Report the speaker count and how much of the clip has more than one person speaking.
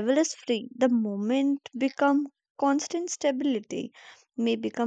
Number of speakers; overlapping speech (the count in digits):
1, no overlap